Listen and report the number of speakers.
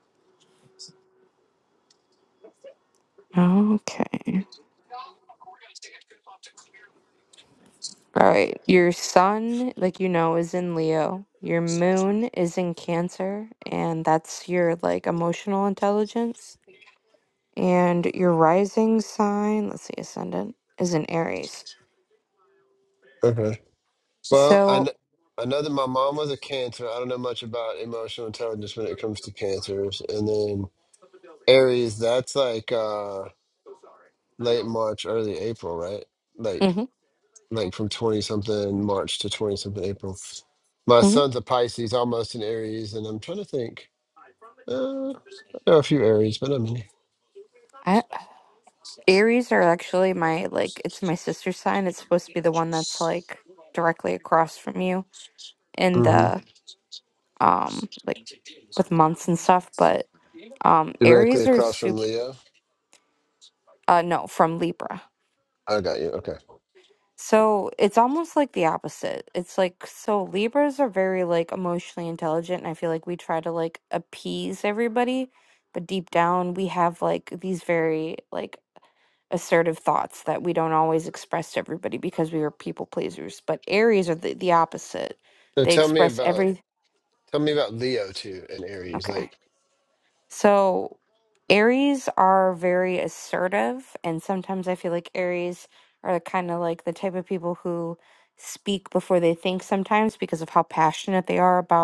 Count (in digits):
2